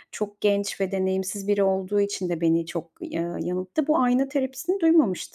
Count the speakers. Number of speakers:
1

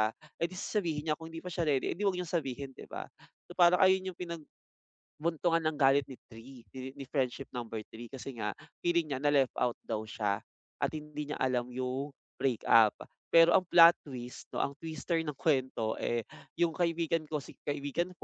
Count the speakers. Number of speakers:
1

